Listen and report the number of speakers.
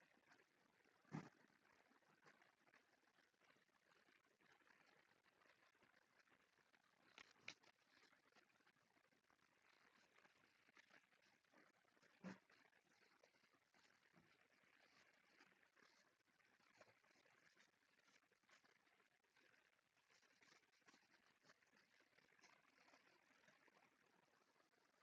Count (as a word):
zero